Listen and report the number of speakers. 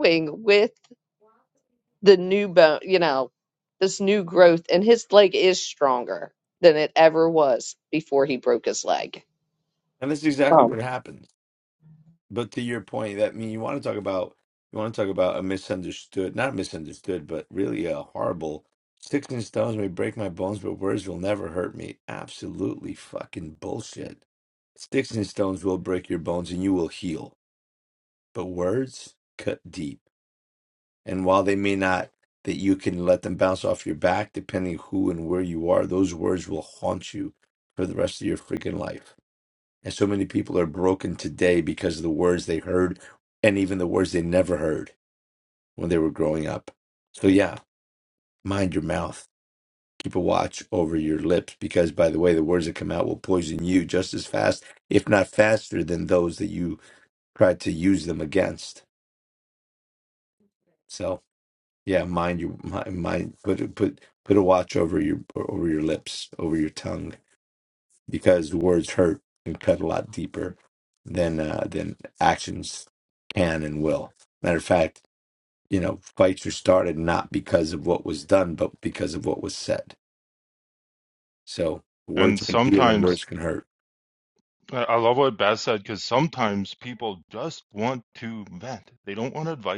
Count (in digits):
3